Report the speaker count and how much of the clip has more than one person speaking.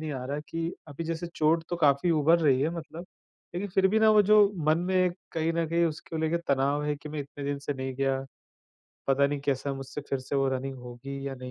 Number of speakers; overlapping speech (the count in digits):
1, no overlap